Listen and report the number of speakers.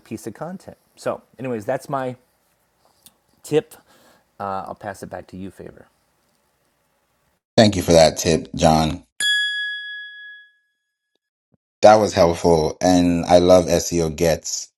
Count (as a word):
two